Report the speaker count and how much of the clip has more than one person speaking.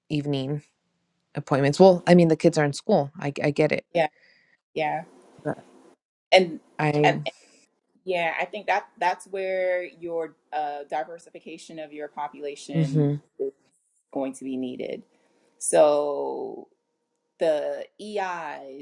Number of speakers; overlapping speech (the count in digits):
2, about 3%